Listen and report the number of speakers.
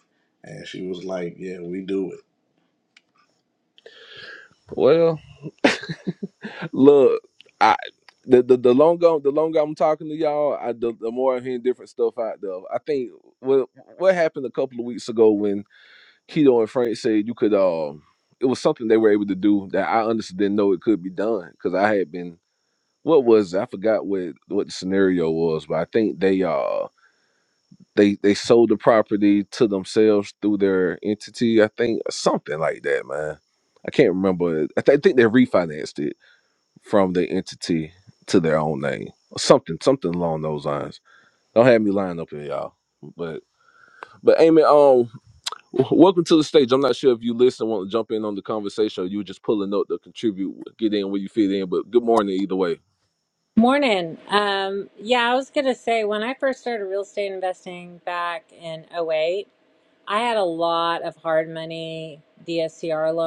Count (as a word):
three